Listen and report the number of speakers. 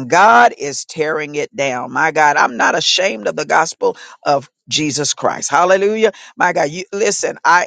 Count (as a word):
one